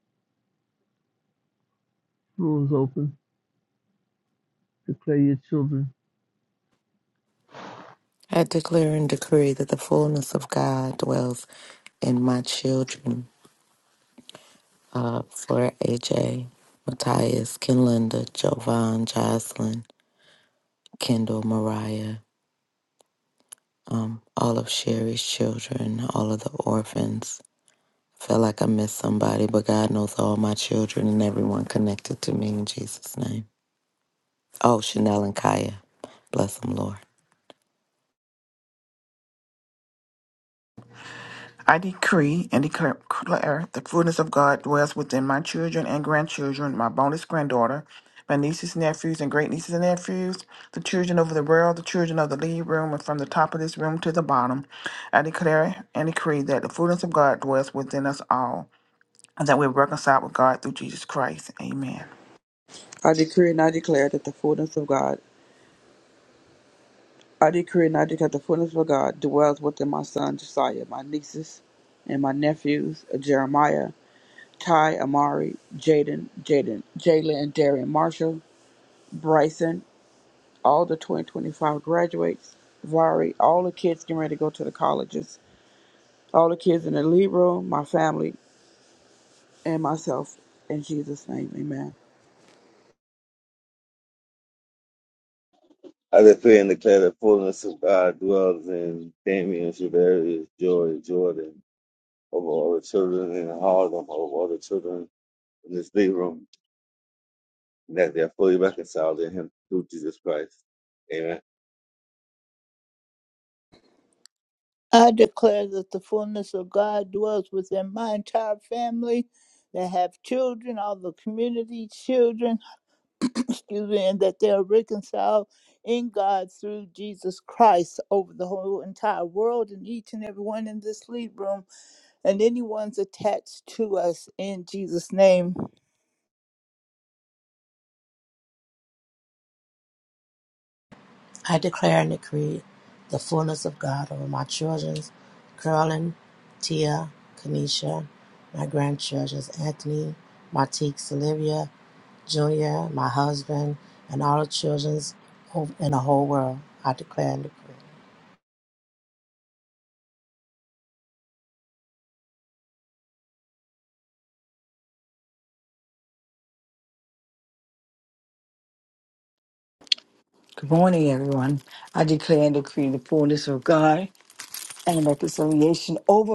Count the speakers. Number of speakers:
8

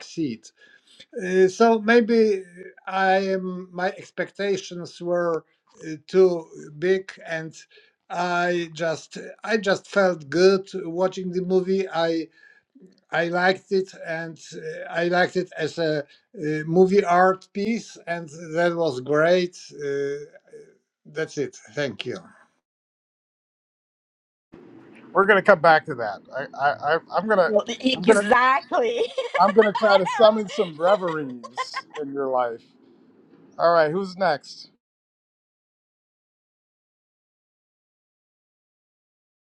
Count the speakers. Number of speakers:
3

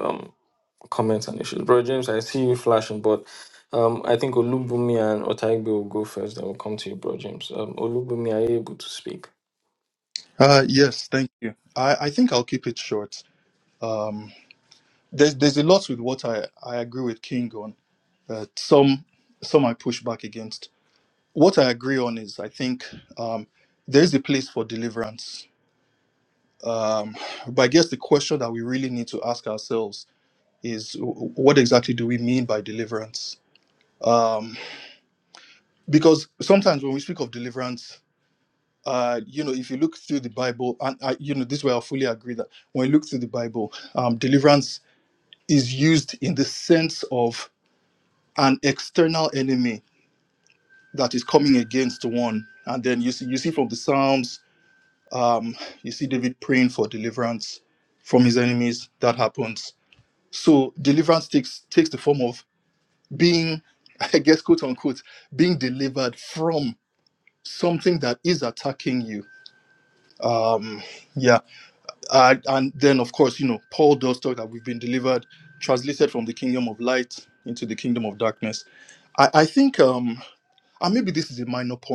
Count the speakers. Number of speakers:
2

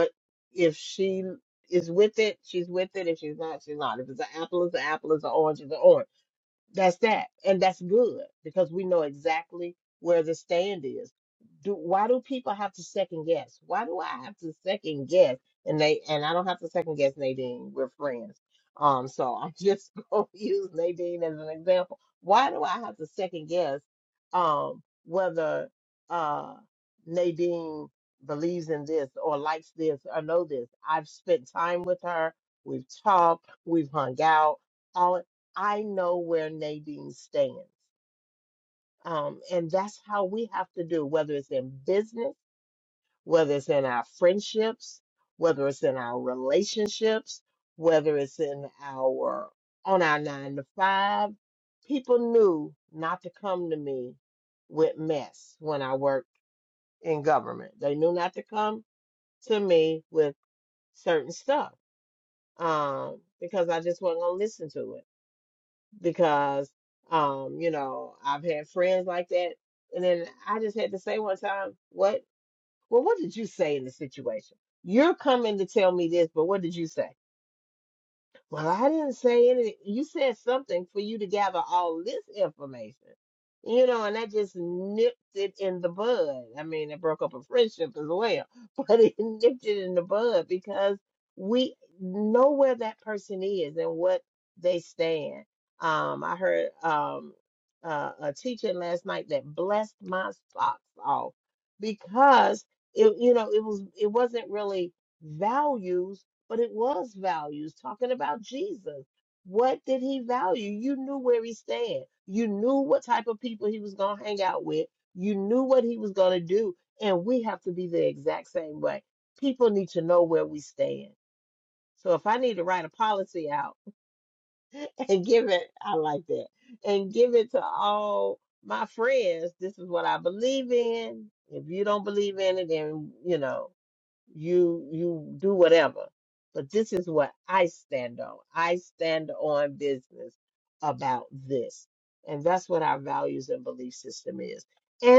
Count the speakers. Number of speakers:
1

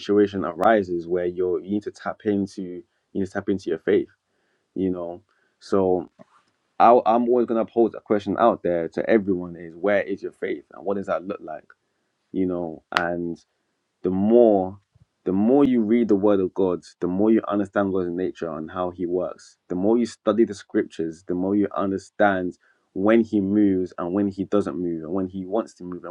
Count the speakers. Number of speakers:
1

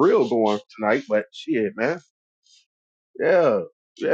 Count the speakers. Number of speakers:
1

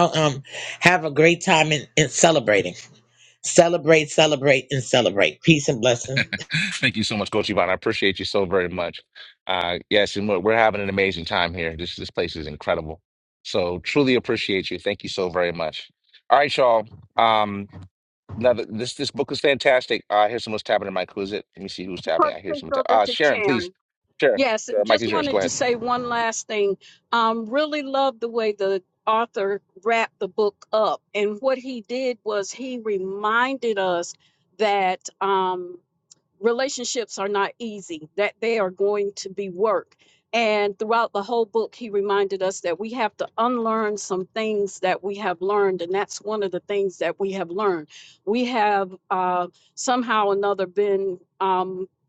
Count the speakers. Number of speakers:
3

